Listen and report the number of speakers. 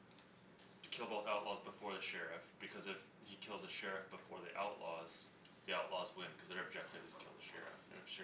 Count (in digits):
1